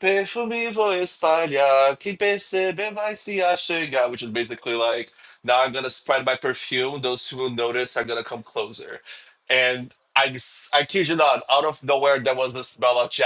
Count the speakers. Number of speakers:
one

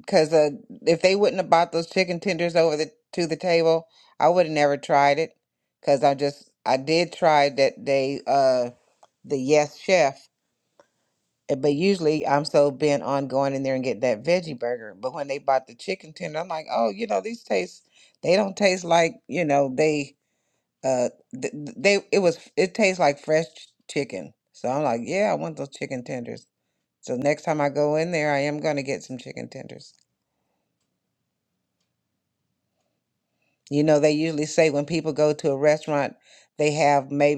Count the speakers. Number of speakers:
one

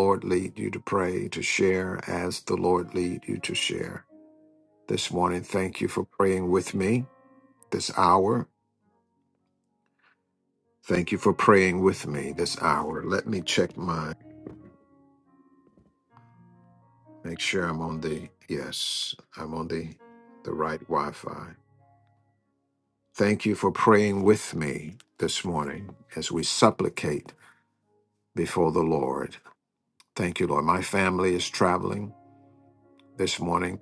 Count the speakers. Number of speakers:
one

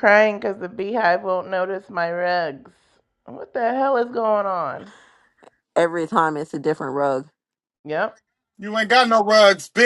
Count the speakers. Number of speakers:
three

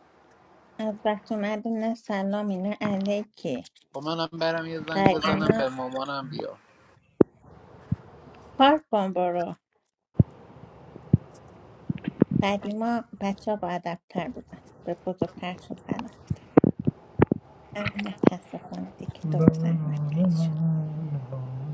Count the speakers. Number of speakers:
three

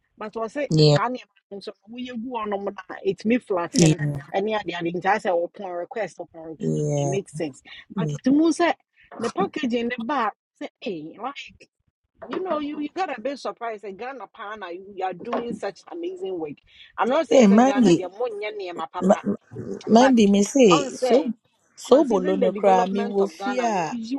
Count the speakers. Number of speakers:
two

